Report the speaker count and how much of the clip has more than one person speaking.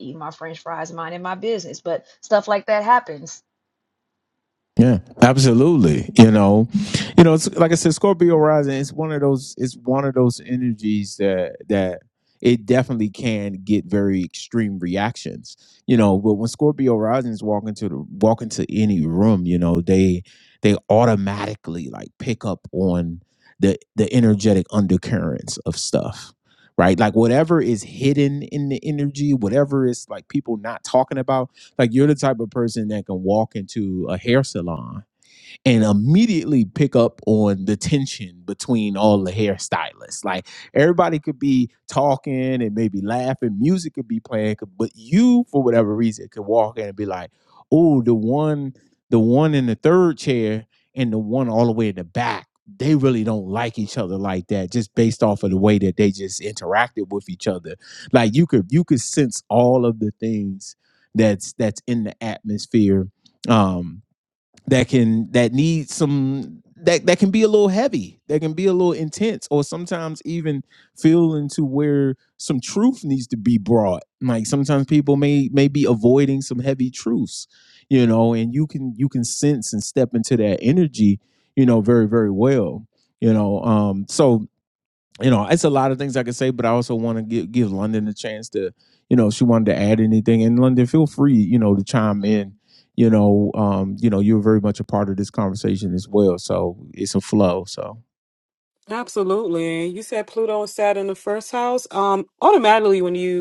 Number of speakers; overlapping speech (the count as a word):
three, no overlap